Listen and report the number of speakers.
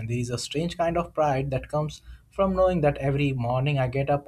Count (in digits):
1